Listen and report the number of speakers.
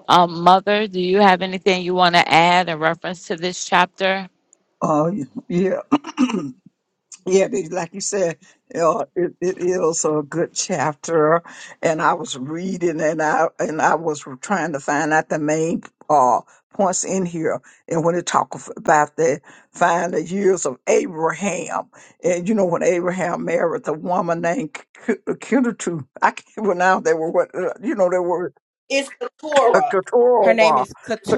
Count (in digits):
3